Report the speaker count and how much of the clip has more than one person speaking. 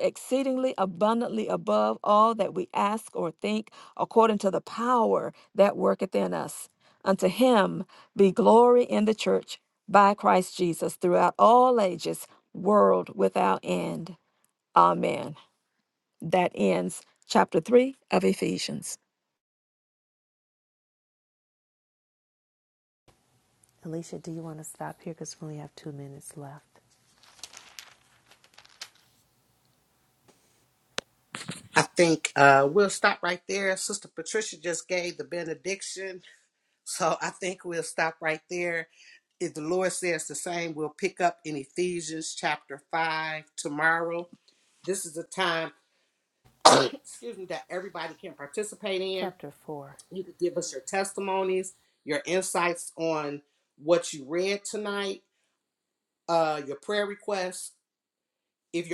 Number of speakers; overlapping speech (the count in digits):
3, under 1%